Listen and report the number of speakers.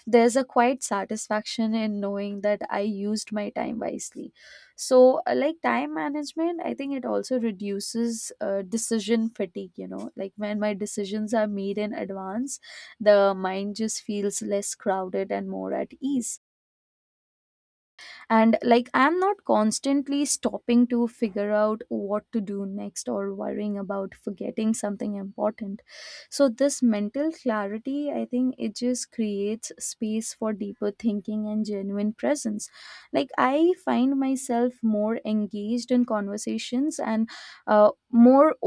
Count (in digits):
1